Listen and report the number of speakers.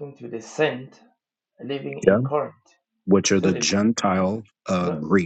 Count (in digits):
2